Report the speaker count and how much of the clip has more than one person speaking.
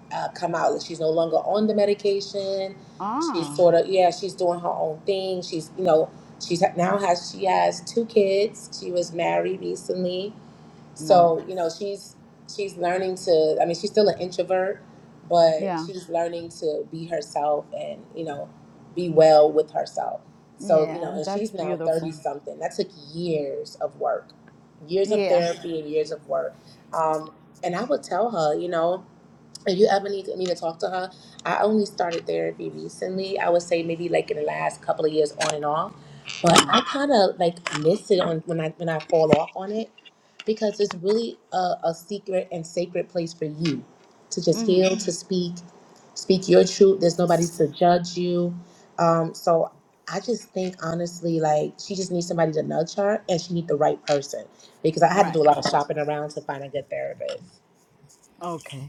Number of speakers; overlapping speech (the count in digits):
2, about 7%